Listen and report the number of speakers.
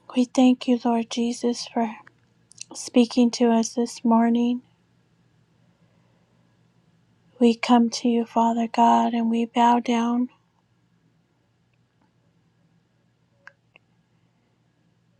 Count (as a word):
one